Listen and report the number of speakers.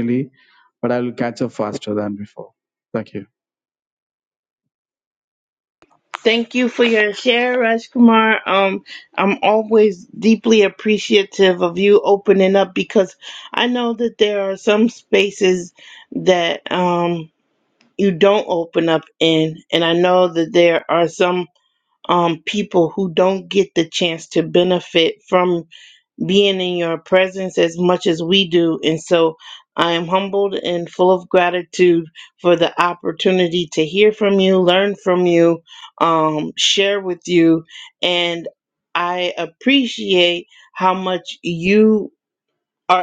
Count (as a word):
two